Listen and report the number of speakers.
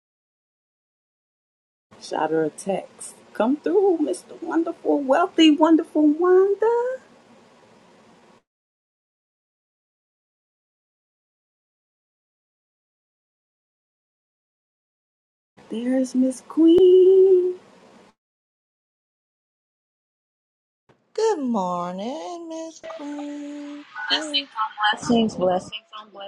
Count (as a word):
three